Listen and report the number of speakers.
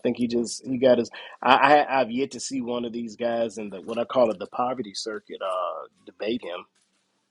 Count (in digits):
1